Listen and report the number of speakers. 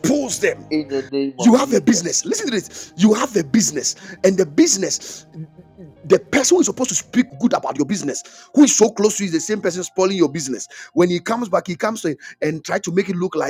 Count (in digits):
2